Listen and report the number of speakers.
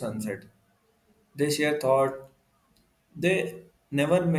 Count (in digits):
1